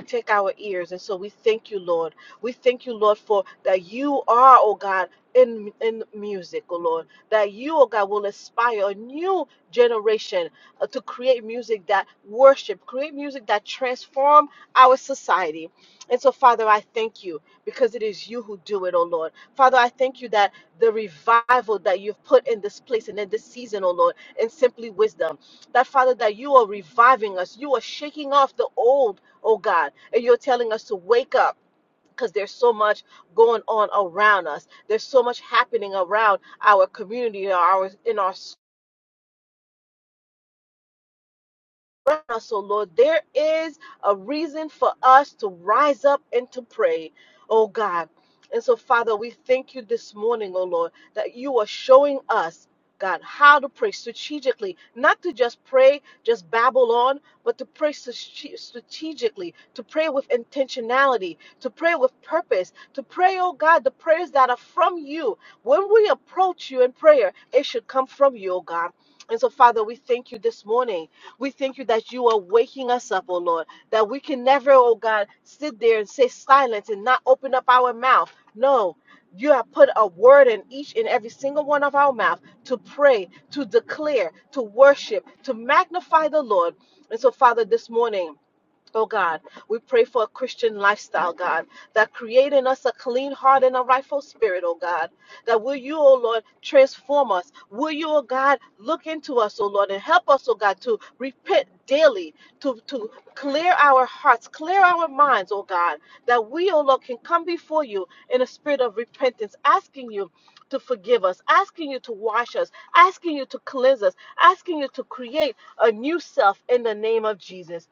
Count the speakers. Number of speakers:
one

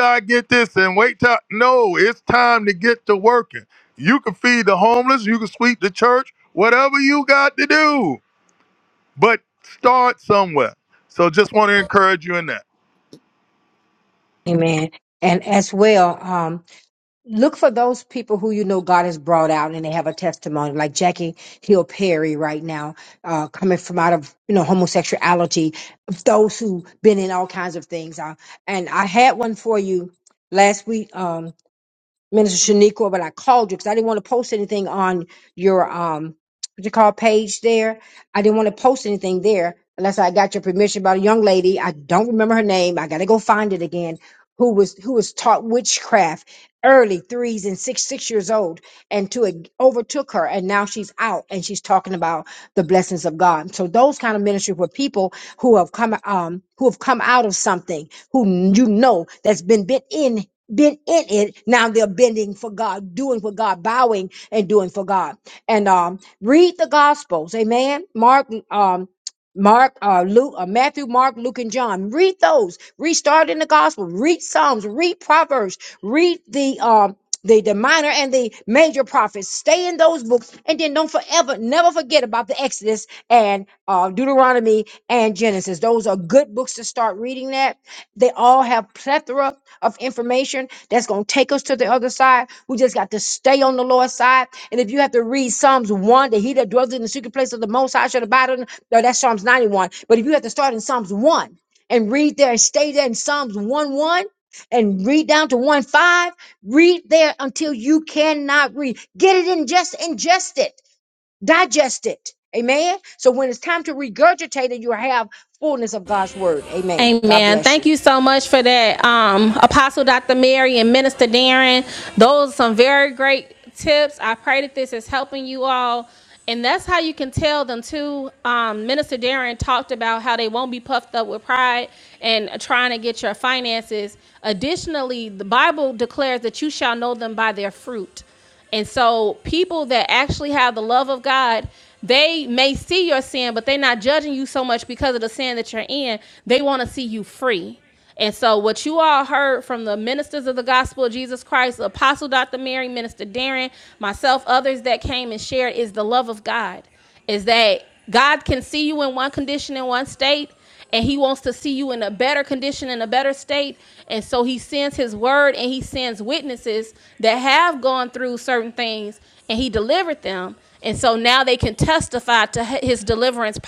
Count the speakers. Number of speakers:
three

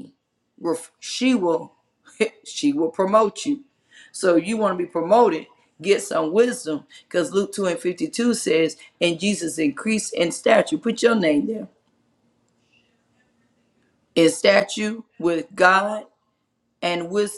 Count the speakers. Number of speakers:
one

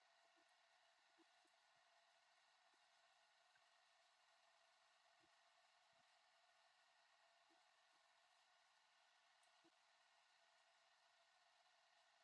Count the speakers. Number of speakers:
zero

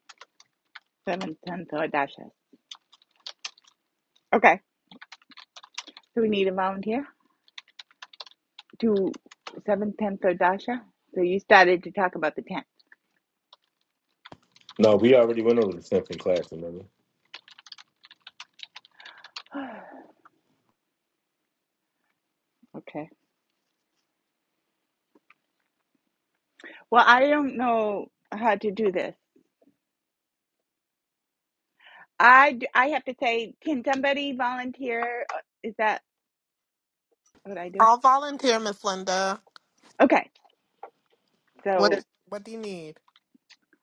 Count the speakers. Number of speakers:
three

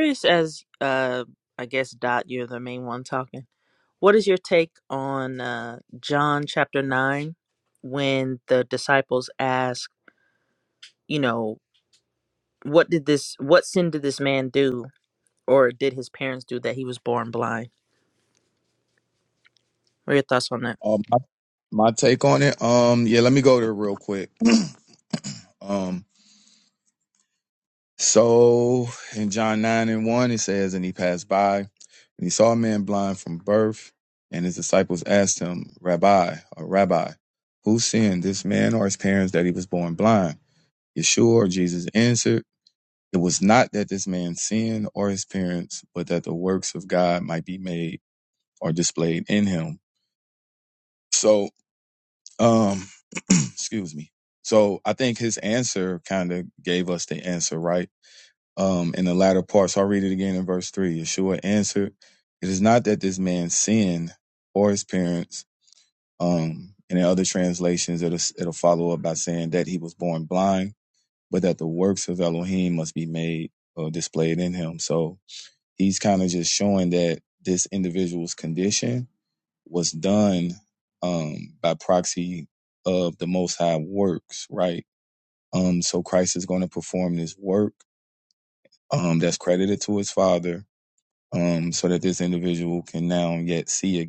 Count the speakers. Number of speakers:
two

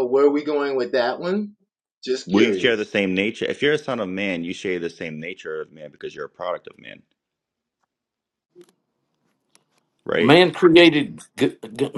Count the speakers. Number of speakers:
three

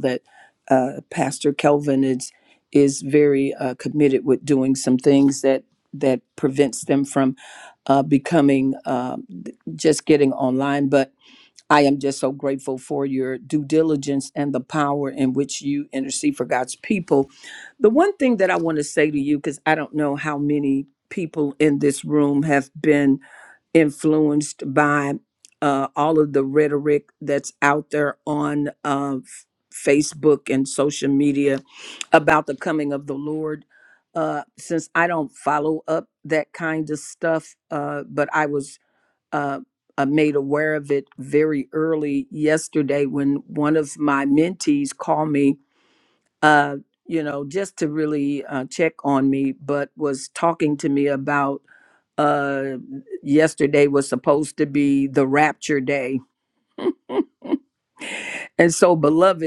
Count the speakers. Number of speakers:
one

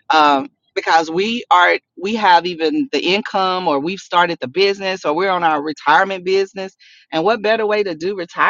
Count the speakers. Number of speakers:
one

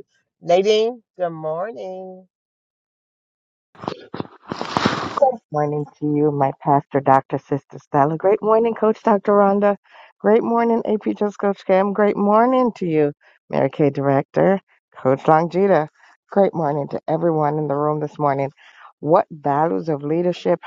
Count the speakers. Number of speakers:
two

